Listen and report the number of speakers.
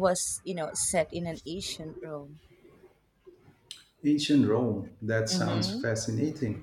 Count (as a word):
two